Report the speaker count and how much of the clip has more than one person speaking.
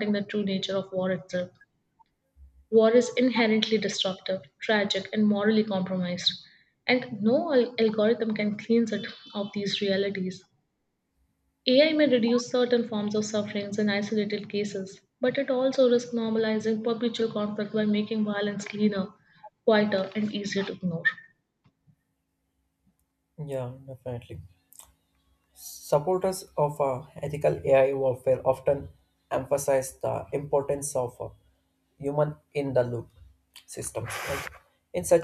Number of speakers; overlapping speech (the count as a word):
two, no overlap